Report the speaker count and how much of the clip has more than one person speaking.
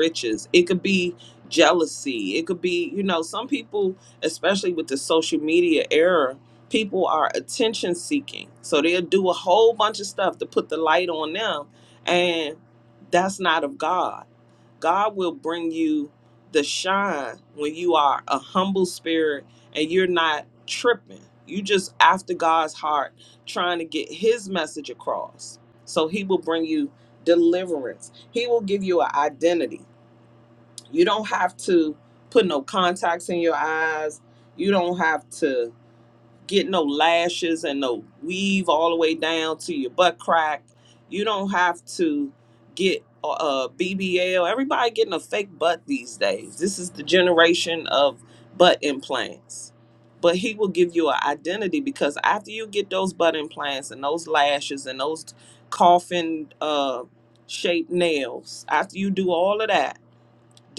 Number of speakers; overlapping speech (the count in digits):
1, no overlap